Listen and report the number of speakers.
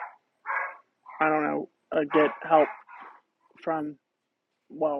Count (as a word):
one